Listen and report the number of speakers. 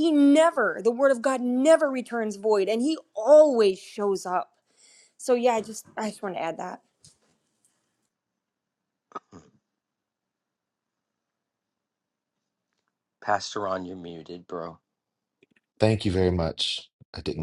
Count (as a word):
three